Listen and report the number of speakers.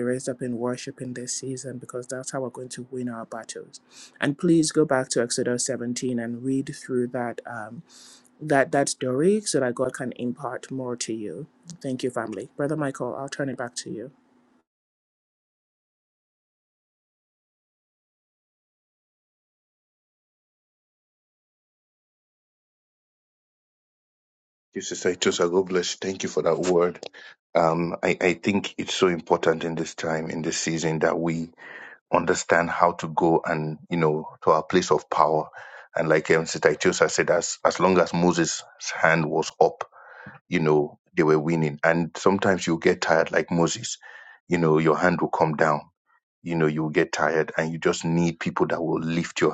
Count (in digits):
2